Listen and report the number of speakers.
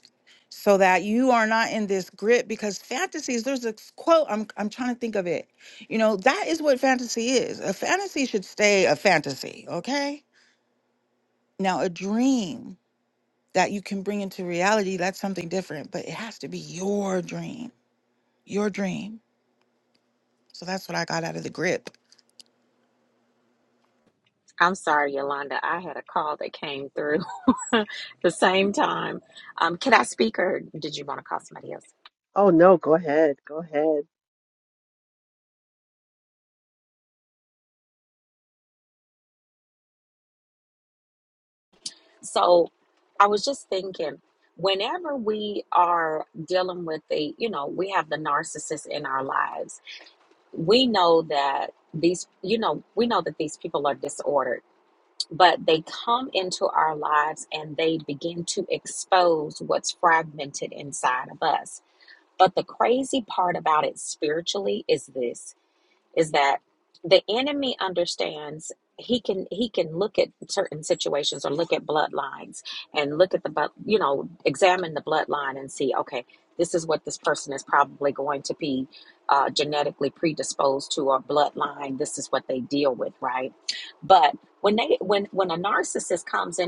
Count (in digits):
3